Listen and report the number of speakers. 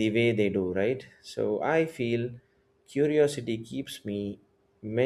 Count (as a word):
one